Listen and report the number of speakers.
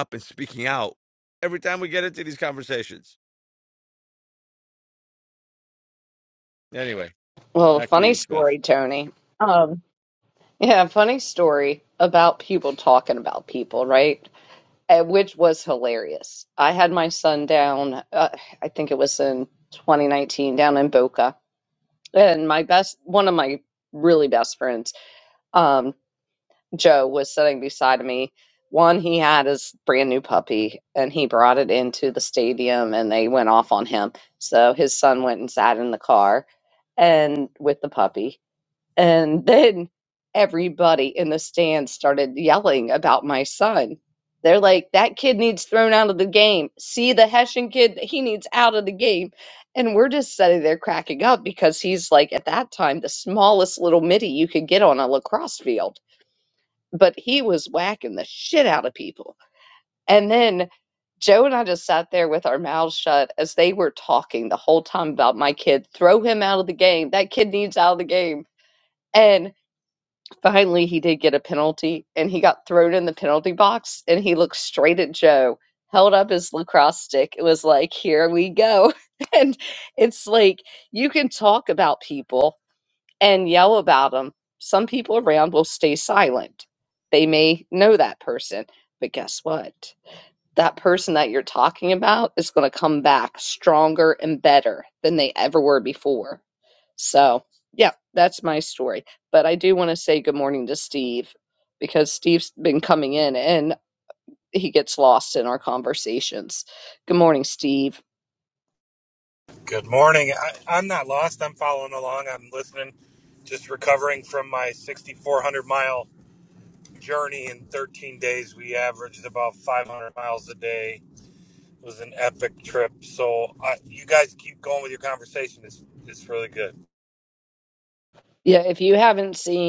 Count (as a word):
three